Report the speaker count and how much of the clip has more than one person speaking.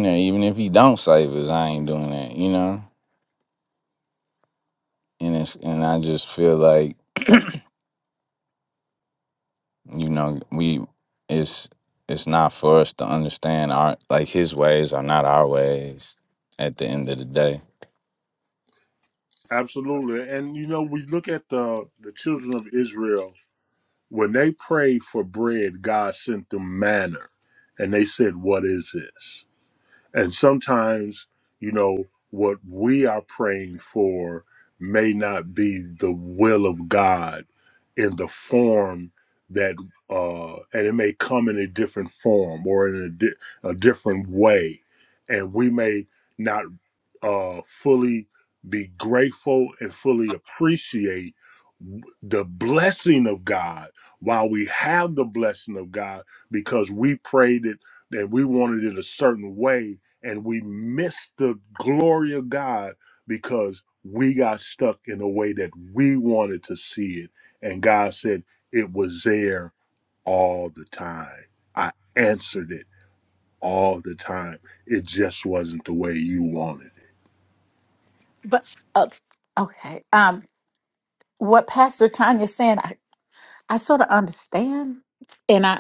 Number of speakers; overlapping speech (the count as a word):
three, no overlap